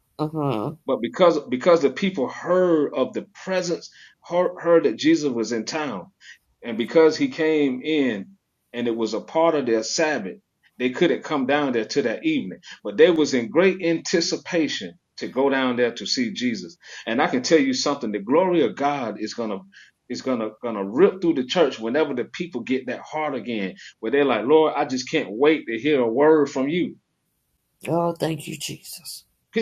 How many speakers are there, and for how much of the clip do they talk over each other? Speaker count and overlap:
2, no overlap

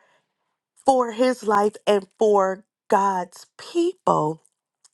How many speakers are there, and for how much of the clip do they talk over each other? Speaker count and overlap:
1, no overlap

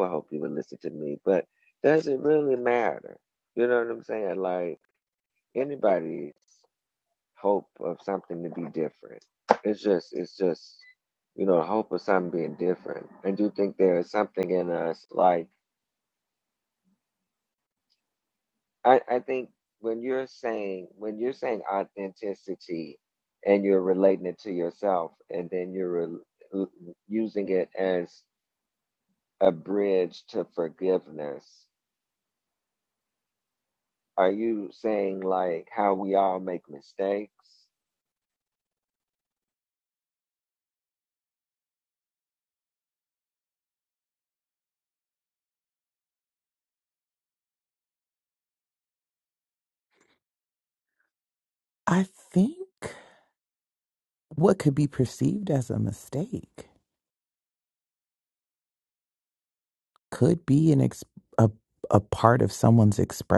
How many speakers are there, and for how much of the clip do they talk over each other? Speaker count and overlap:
2, no overlap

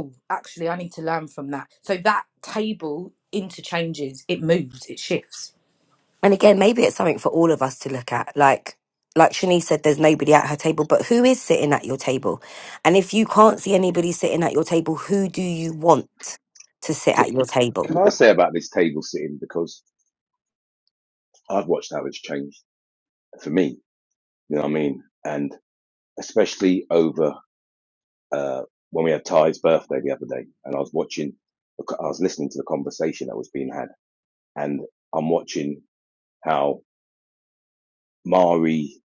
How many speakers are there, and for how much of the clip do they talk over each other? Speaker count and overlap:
3, under 1%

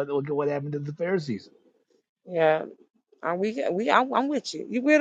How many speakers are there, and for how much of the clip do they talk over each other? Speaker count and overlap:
2, no overlap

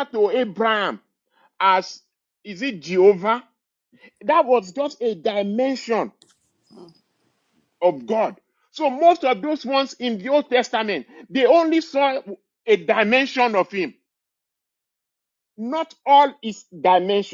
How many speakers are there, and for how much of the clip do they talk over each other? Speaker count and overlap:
1, no overlap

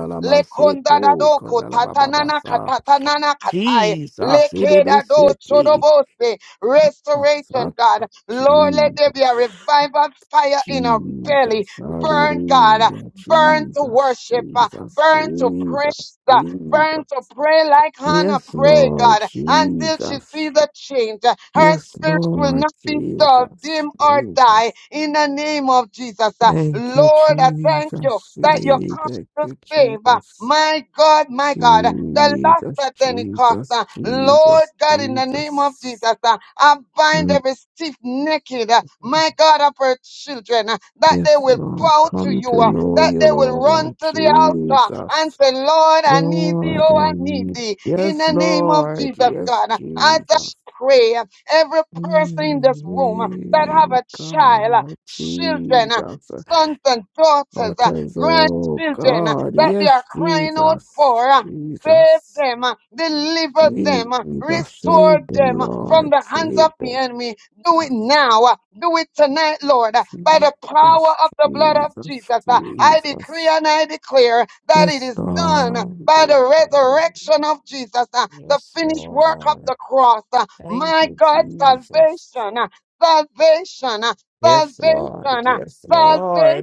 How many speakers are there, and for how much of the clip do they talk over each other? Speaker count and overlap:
2, about 58%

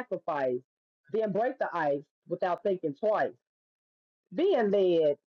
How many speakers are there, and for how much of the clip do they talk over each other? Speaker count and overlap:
1, no overlap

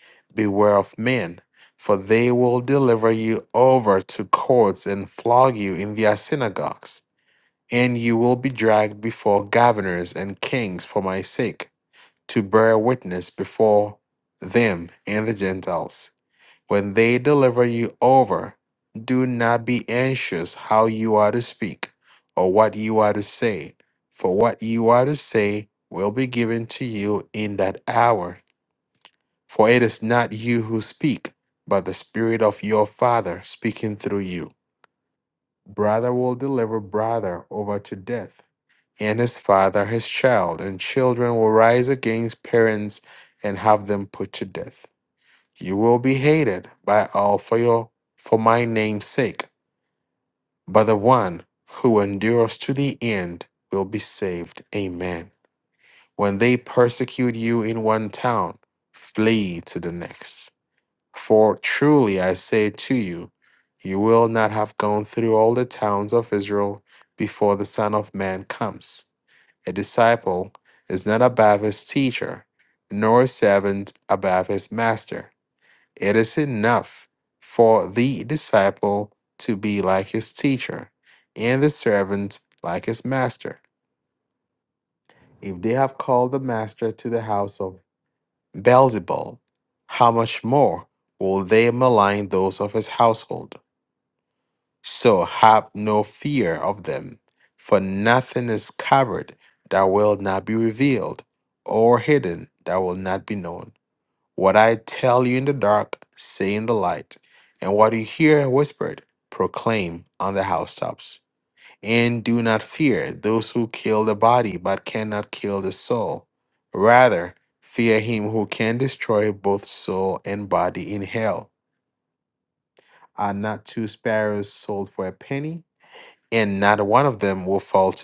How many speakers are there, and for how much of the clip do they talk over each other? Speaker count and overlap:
1, no overlap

